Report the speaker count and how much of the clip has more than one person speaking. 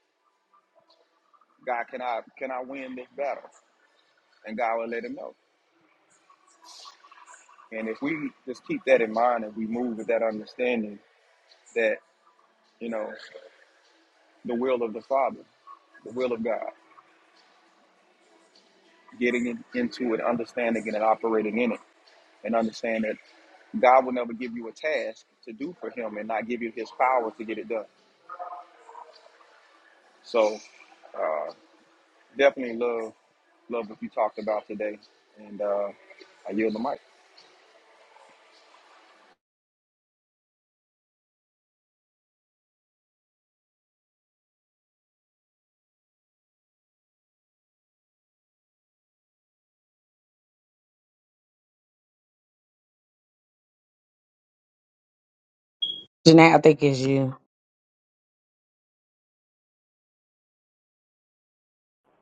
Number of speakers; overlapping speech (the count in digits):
2, no overlap